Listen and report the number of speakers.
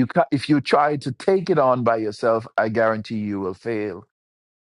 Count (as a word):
one